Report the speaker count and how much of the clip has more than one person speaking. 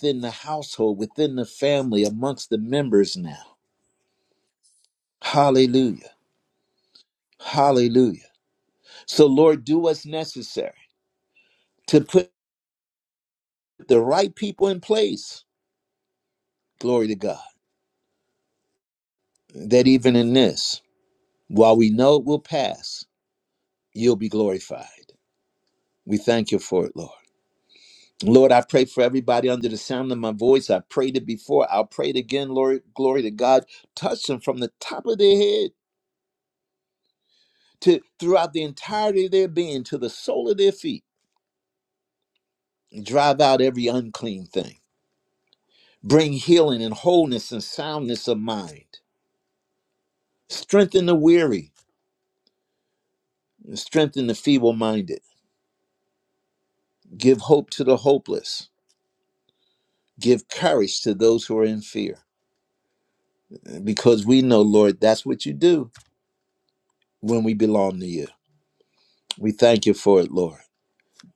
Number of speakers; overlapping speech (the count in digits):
1, no overlap